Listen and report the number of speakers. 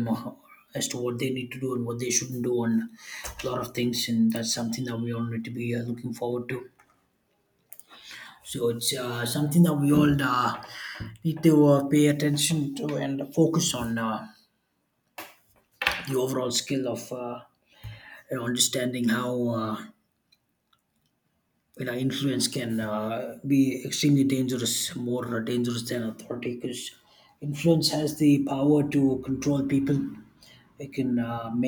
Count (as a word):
one